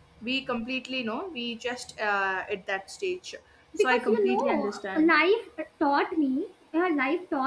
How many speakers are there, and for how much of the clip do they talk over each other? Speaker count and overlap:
two, about 10%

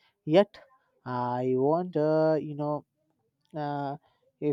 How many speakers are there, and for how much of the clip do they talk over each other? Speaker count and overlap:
one, no overlap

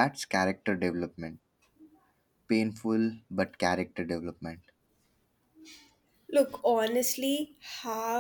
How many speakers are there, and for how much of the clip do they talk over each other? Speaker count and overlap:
two, no overlap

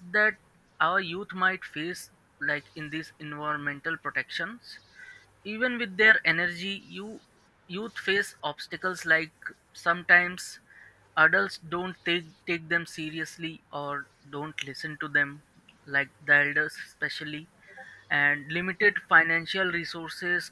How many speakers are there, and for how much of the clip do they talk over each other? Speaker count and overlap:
one, no overlap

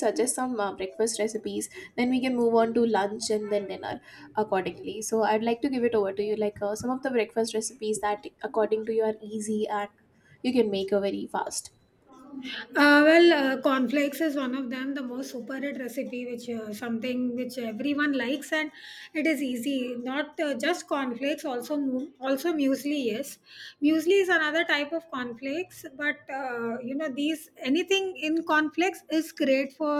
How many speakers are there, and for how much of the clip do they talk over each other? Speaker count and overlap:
two, no overlap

